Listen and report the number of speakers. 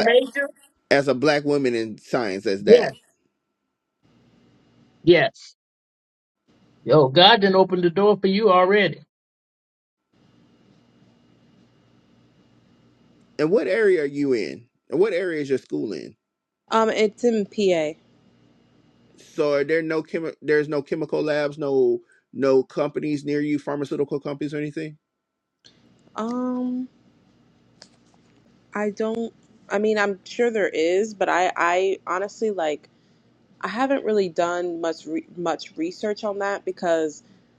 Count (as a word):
three